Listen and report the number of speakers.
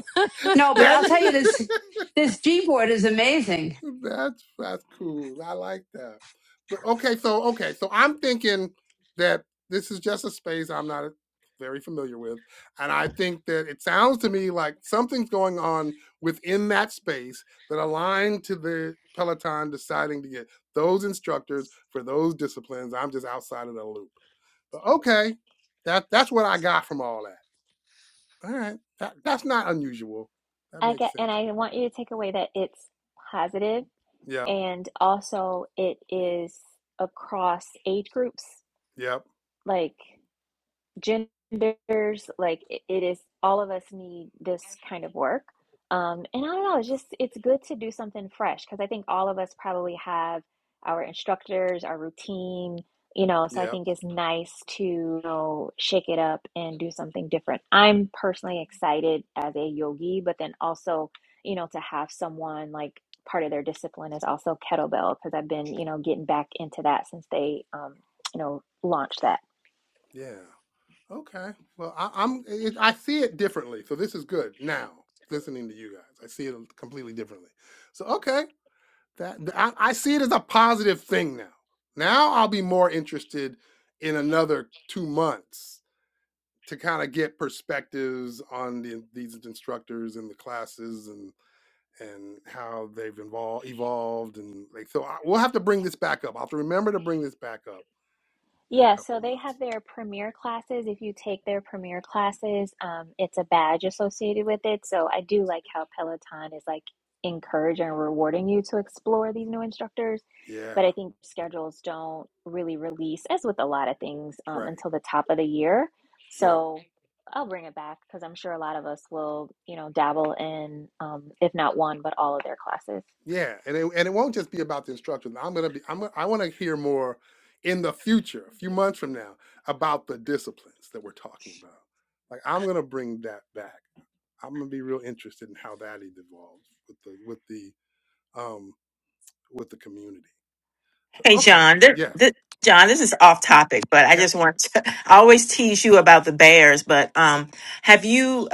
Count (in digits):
4